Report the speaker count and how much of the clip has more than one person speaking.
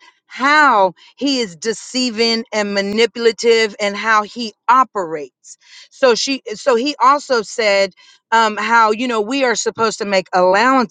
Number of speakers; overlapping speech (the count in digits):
1, no overlap